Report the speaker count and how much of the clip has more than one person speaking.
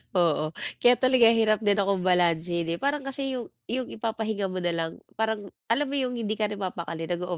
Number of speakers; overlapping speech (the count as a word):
one, no overlap